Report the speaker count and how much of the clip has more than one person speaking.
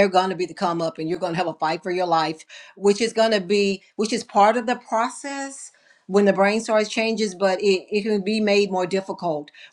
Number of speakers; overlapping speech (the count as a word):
one, no overlap